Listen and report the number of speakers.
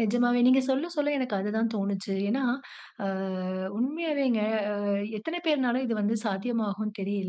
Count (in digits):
1